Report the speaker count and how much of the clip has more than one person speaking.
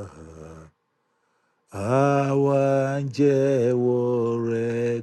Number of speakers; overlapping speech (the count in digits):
1, no overlap